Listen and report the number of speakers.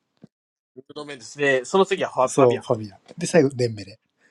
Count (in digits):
2